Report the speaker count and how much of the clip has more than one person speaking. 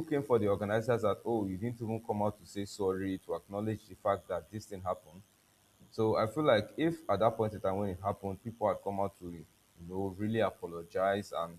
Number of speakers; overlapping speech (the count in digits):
1, no overlap